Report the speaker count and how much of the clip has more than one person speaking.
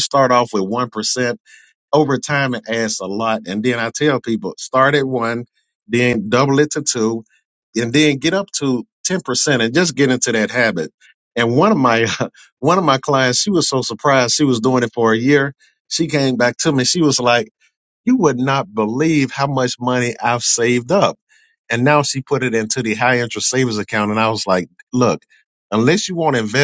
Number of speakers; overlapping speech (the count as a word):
one, no overlap